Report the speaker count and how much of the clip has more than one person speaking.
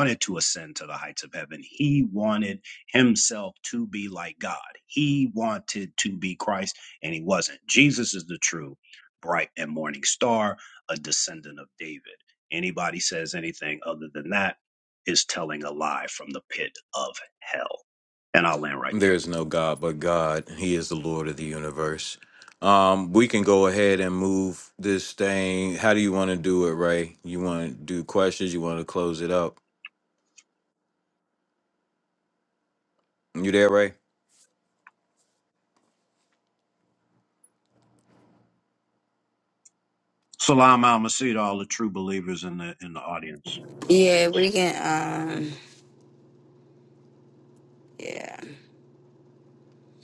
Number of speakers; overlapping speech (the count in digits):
3, under 1%